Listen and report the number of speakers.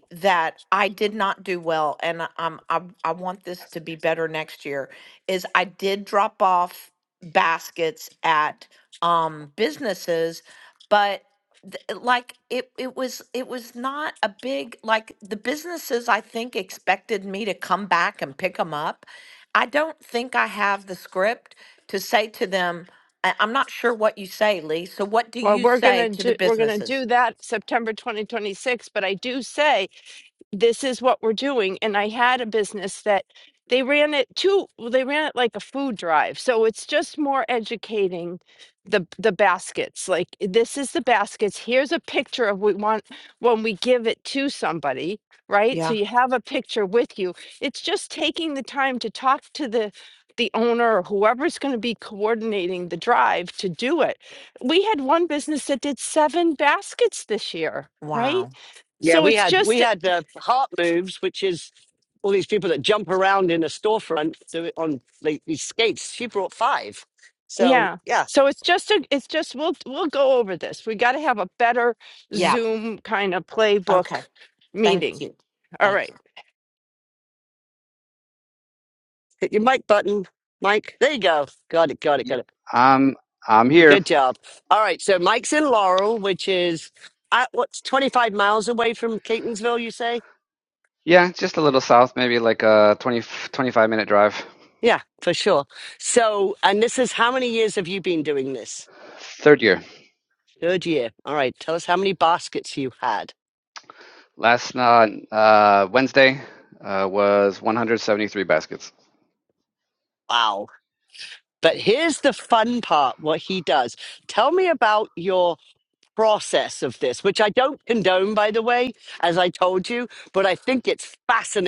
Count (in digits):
4